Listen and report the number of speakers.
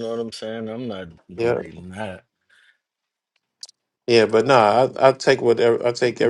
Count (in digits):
2